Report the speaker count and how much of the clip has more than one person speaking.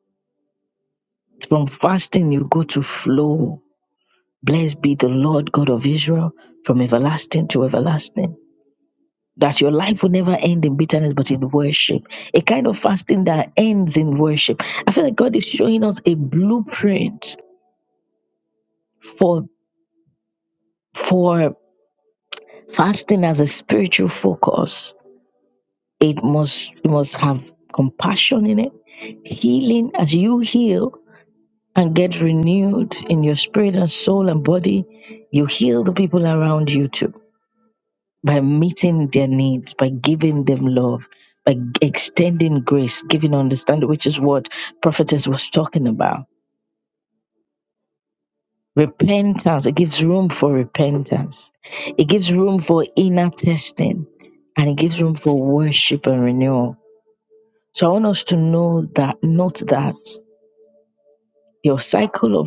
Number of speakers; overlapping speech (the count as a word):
one, no overlap